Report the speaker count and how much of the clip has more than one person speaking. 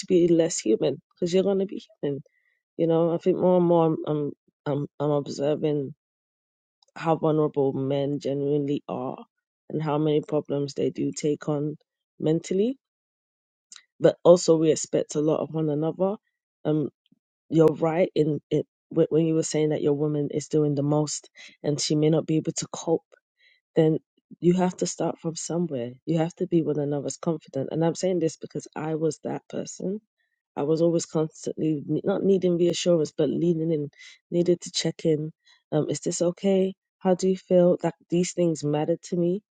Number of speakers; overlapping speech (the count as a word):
one, no overlap